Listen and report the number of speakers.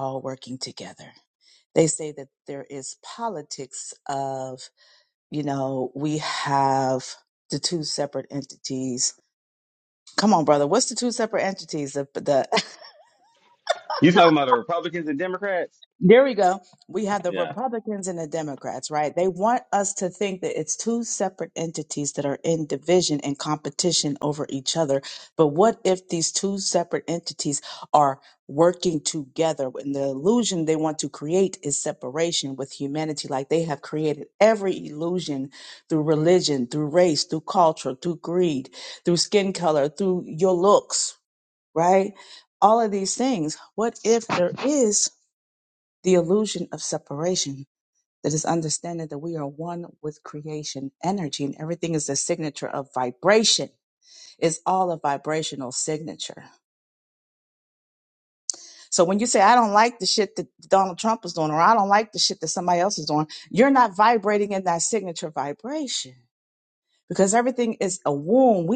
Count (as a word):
two